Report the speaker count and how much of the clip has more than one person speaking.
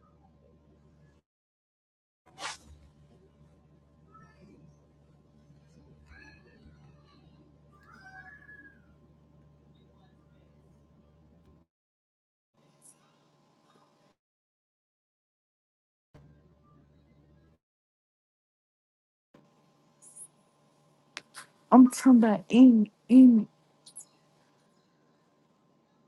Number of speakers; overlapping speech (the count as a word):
one, no overlap